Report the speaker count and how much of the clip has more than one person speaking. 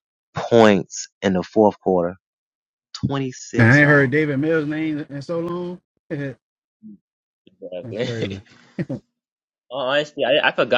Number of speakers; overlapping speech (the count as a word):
three, about 10%